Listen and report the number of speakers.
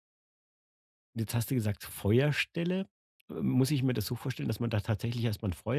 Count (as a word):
one